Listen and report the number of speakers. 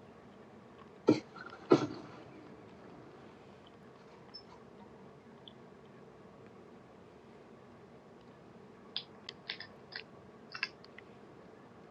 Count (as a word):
zero